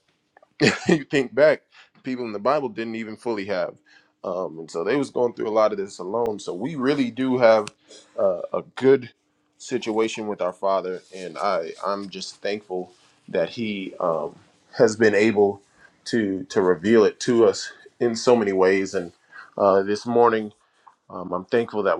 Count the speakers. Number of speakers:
one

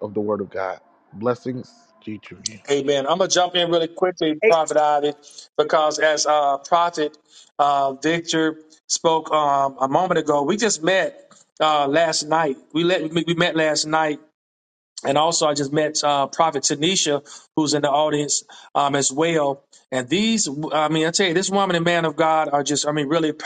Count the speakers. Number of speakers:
two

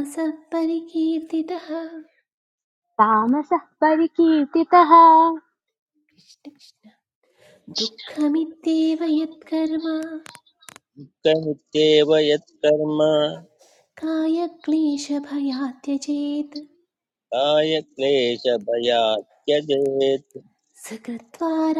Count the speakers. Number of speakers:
three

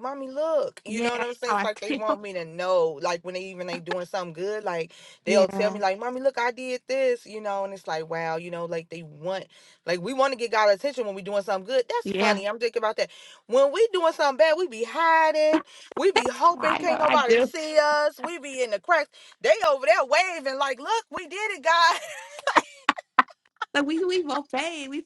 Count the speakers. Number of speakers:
two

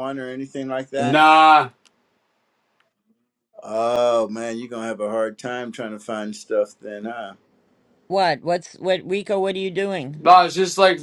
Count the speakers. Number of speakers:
three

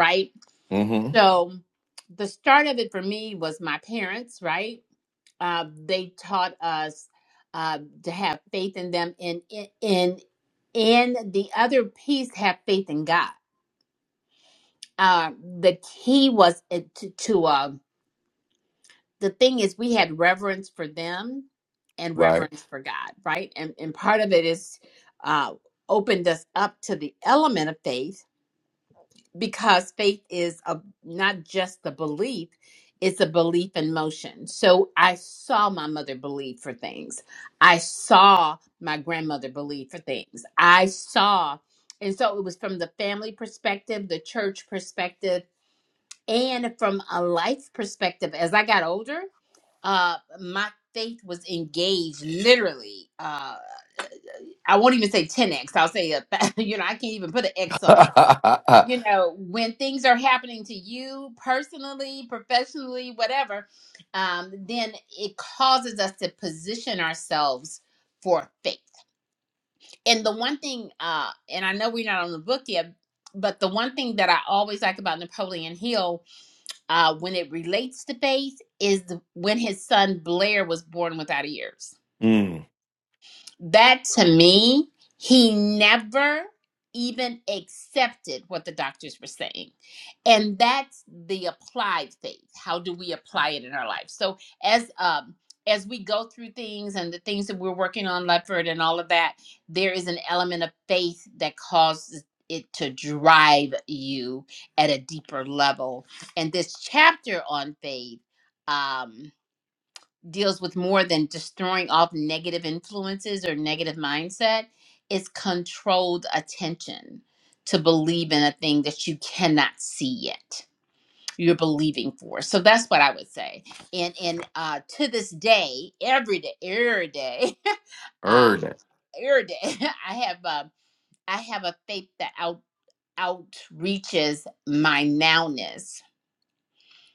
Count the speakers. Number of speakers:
two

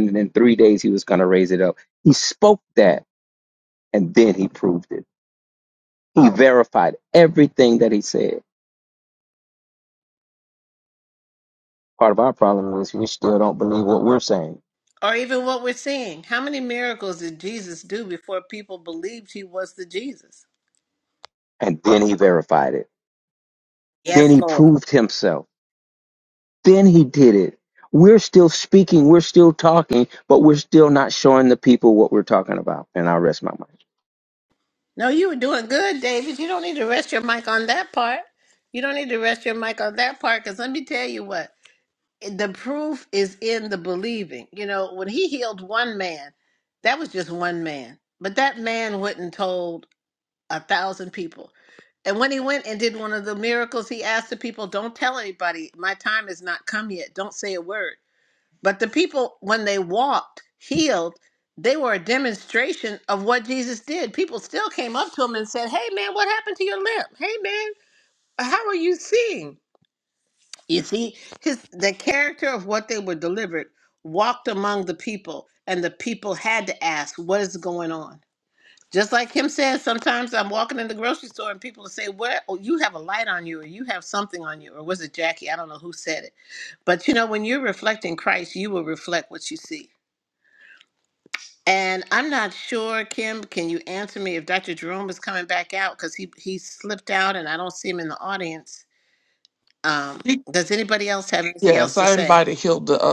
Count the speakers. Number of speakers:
three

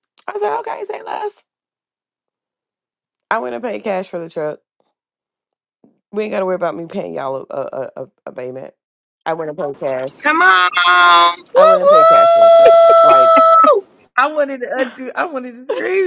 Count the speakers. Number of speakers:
three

